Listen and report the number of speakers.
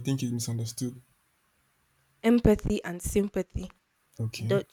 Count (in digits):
2